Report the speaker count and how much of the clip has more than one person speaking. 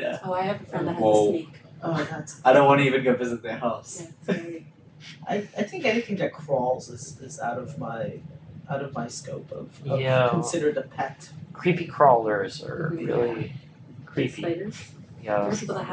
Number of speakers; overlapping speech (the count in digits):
4, about 25%